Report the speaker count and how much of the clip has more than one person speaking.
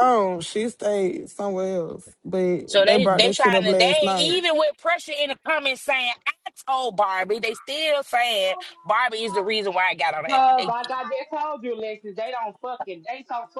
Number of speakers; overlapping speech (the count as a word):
three, about 16%